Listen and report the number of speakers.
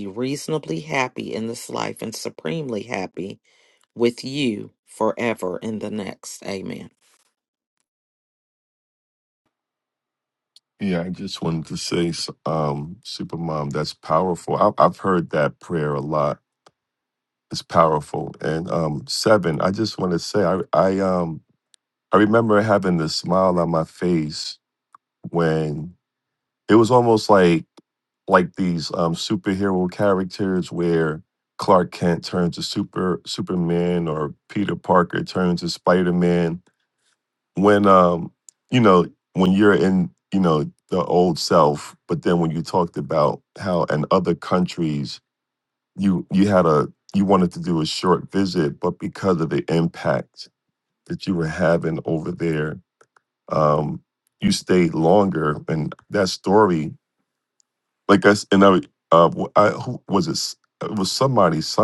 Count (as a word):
two